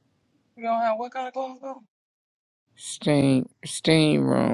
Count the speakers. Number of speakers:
2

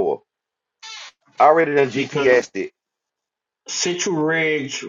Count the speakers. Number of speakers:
2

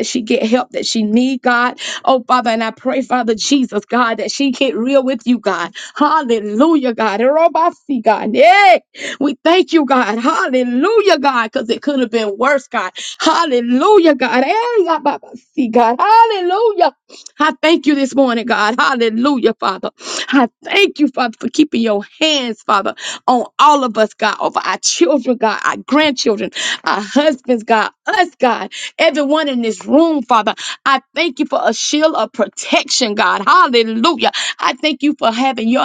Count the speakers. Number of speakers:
1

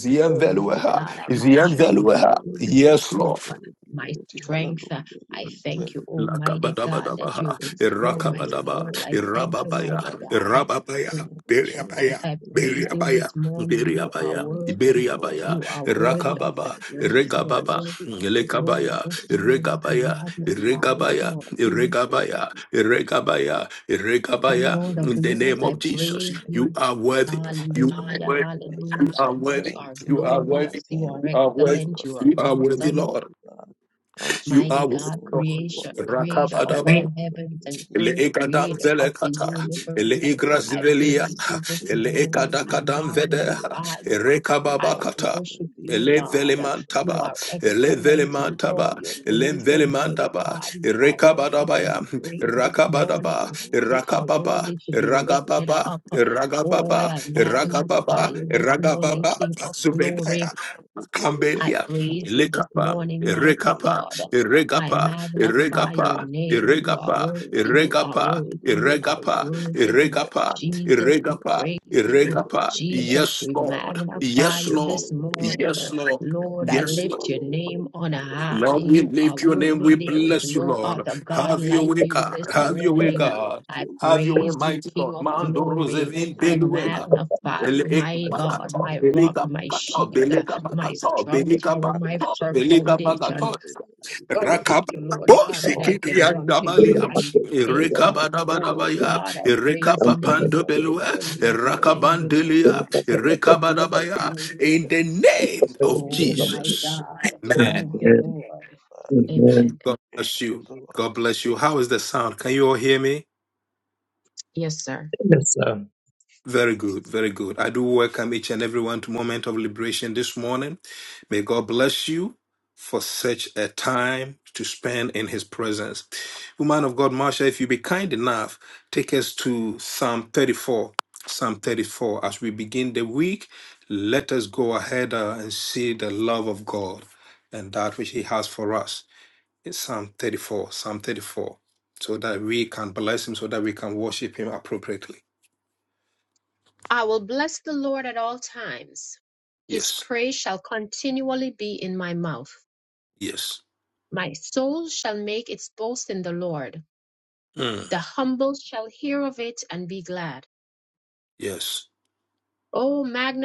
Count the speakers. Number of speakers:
4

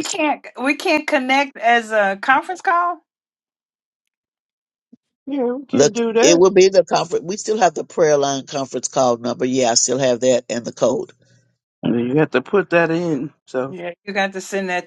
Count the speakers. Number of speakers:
3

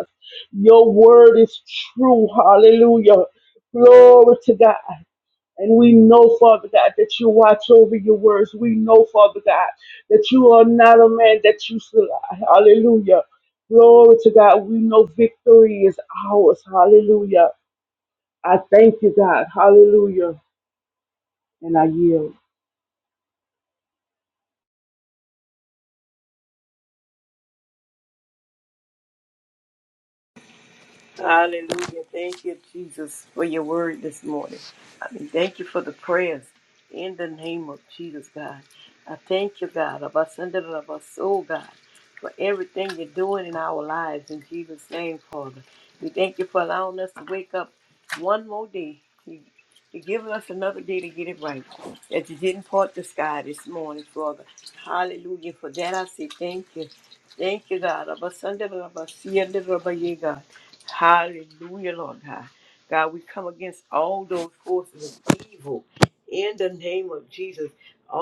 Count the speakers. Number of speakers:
2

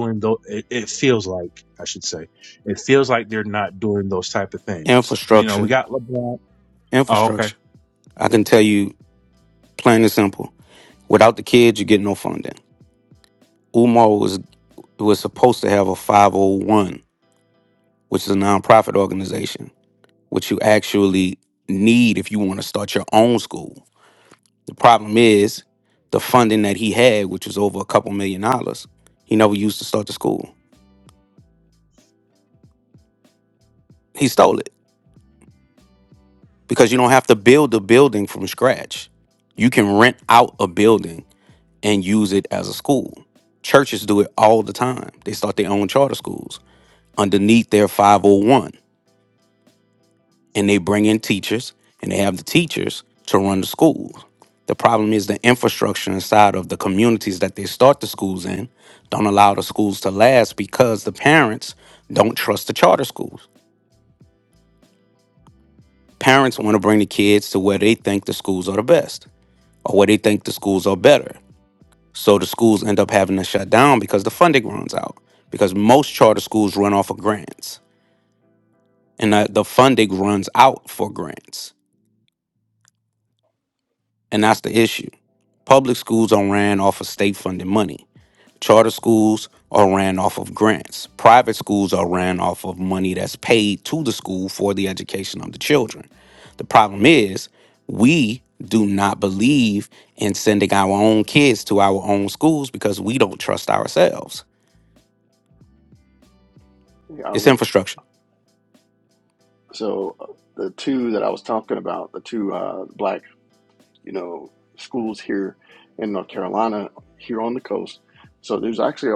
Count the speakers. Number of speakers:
3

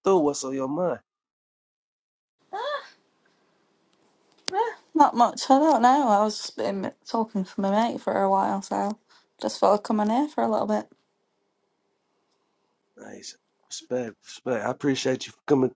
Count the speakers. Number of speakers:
2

